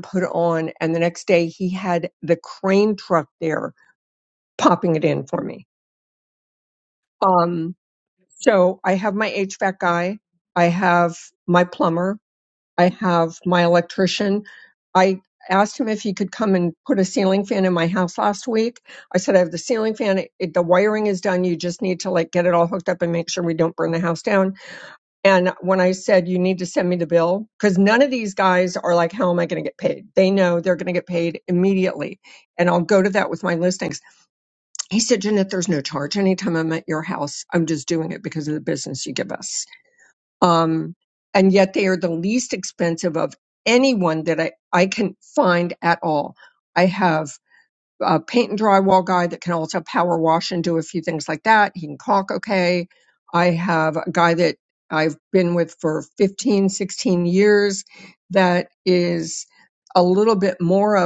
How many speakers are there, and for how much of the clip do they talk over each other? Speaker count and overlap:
1, no overlap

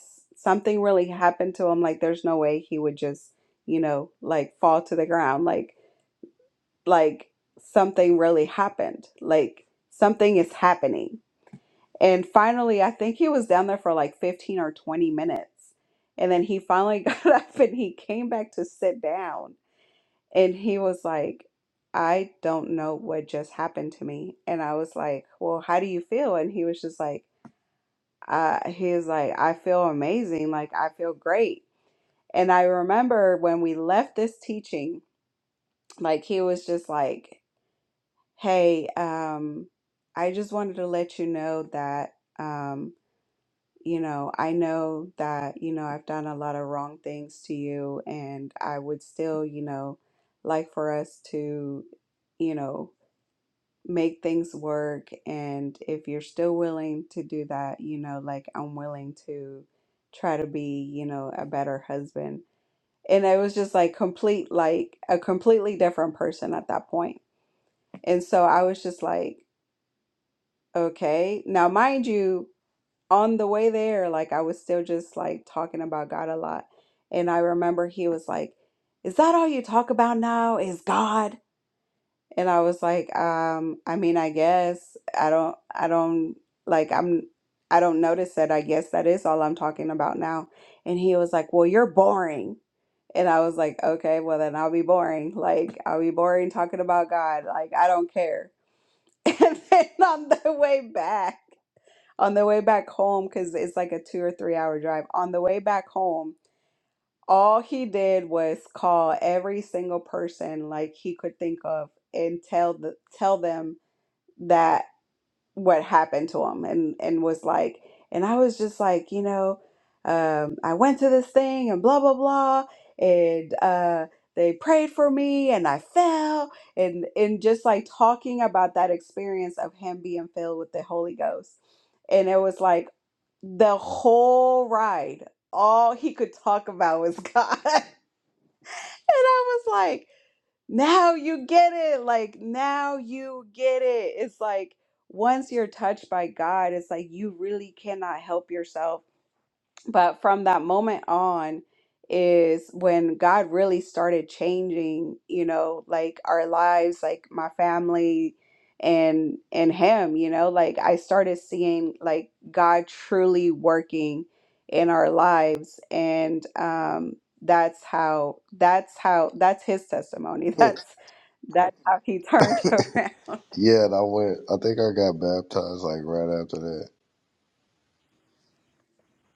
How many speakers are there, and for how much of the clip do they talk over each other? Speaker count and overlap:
2, no overlap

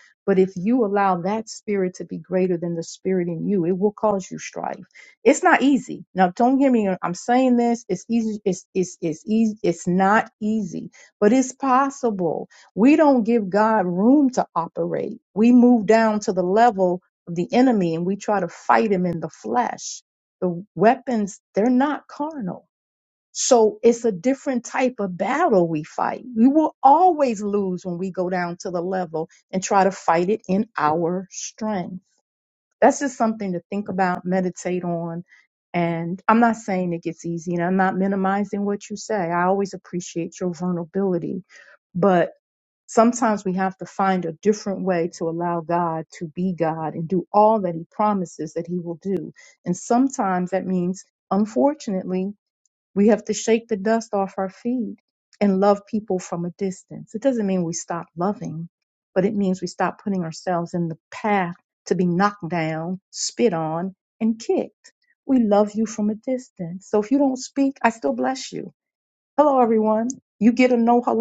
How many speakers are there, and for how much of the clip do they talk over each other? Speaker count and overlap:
1, no overlap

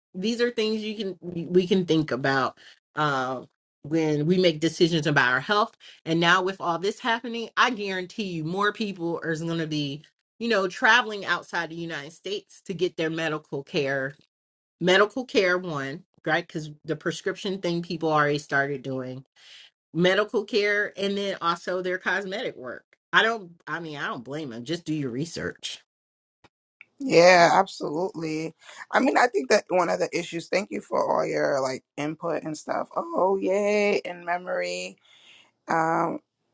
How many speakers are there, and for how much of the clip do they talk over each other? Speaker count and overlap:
2, no overlap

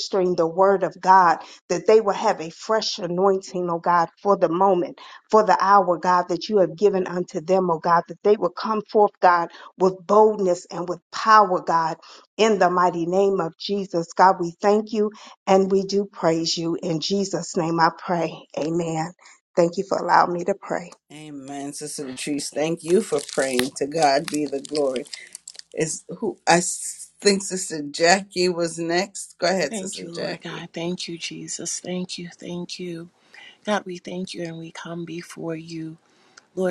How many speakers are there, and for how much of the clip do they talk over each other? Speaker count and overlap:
3, about 3%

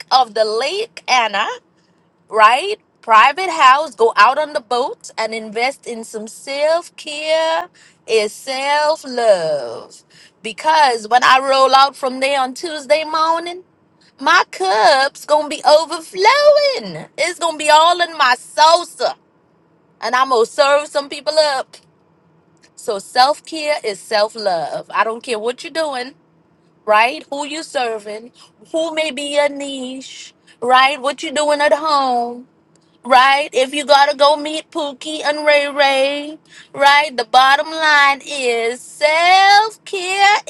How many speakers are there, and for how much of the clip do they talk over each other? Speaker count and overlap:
1, no overlap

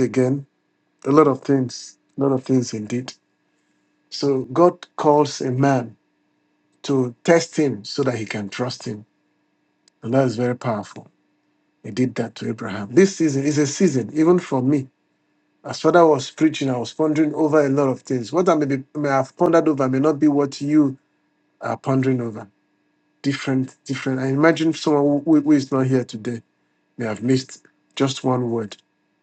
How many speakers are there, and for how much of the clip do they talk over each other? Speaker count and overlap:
1, no overlap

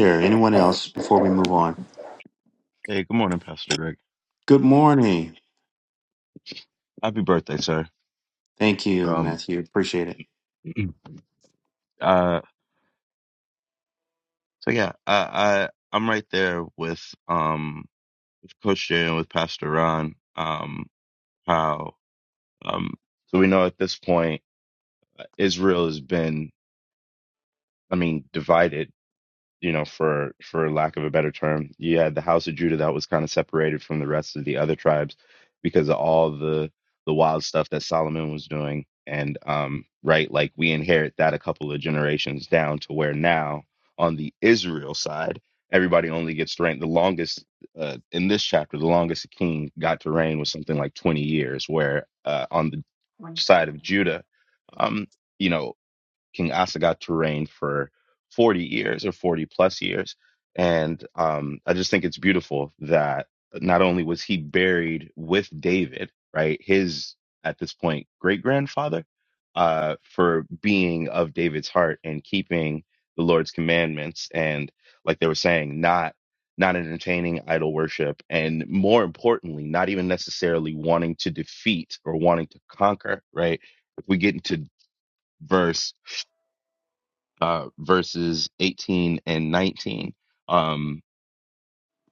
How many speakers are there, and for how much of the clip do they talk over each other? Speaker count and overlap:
2, under 1%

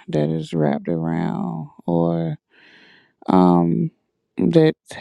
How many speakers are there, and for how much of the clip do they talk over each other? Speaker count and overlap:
1, no overlap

